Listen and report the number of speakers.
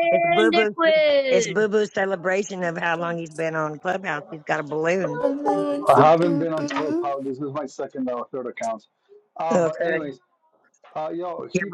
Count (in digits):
4